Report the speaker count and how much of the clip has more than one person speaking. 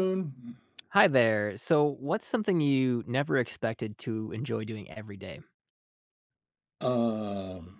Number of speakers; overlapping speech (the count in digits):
2, no overlap